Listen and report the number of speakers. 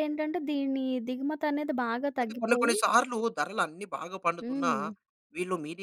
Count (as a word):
two